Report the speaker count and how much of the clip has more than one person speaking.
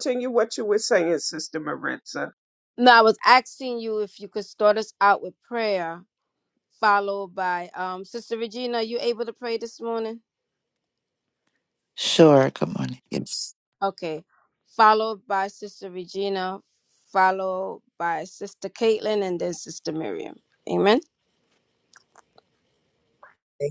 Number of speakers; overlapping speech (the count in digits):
3, no overlap